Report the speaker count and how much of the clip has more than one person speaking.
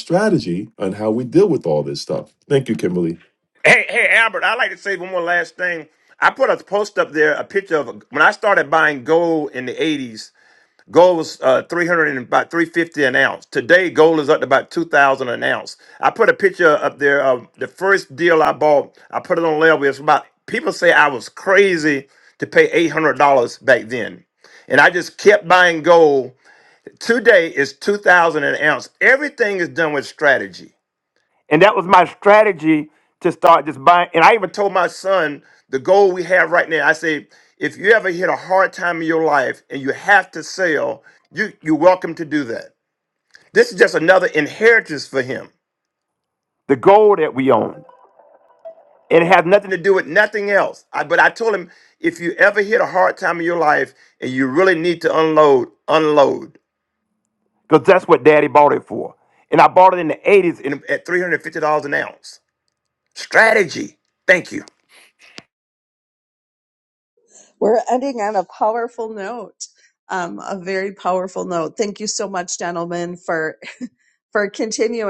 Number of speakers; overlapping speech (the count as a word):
three, no overlap